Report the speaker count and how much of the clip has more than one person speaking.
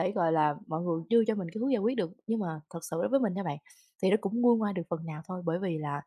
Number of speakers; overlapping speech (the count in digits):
1, no overlap